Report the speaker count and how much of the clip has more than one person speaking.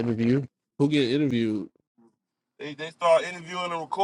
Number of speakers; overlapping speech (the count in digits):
2, no overlap